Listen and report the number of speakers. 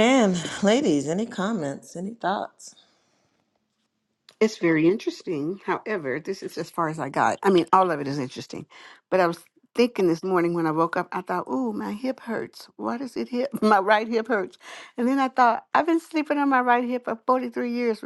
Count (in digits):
2